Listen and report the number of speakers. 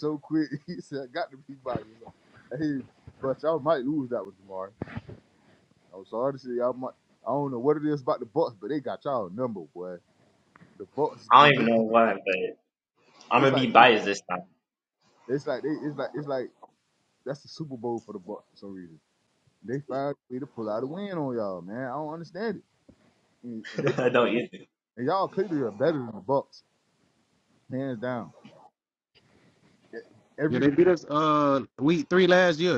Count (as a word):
three